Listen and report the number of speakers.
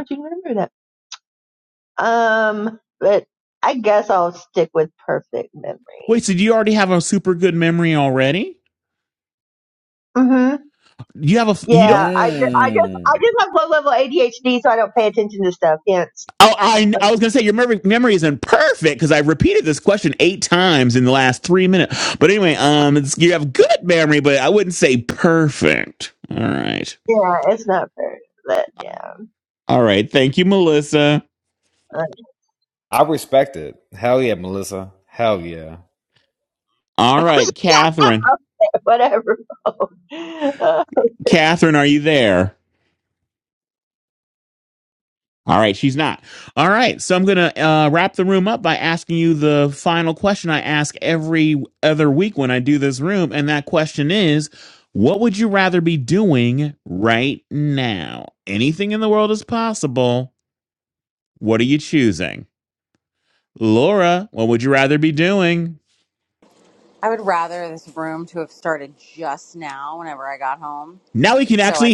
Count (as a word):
four